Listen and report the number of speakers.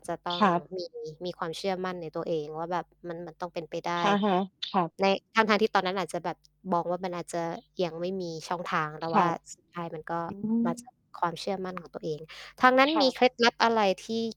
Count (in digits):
2